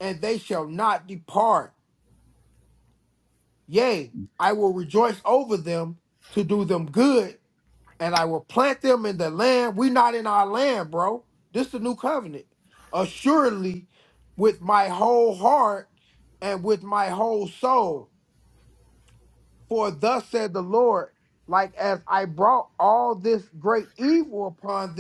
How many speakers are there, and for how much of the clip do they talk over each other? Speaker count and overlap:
1, no overlap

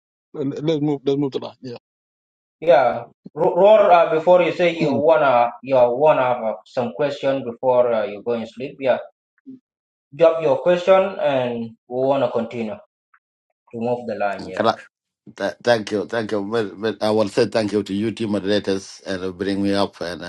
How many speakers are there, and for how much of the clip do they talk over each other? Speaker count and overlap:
3, about 1%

